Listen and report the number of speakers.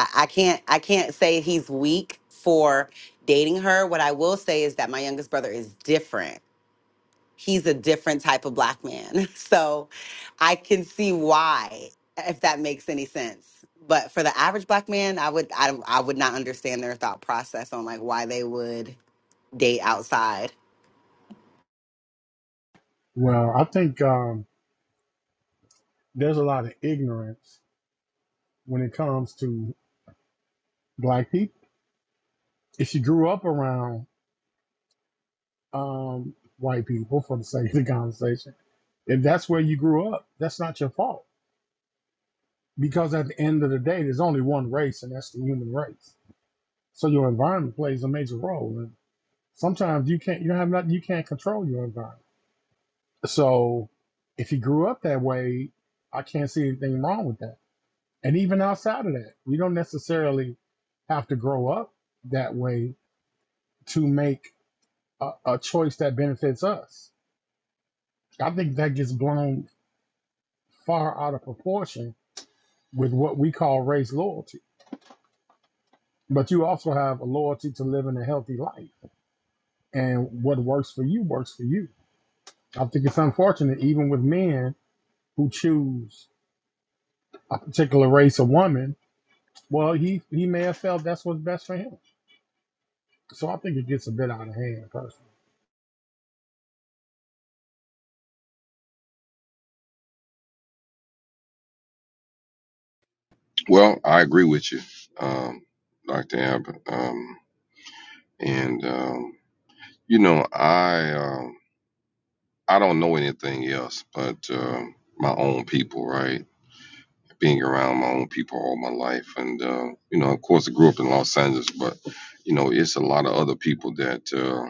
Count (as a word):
three